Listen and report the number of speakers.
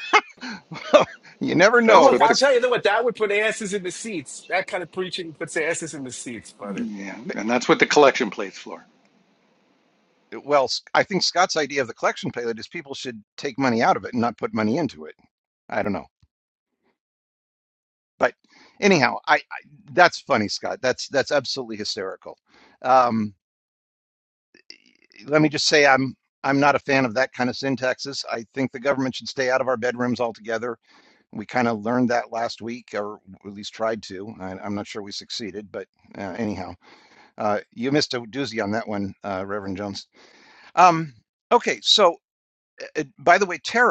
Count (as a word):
three